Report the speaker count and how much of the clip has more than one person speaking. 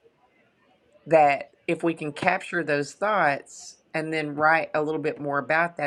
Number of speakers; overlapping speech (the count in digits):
1, no overlap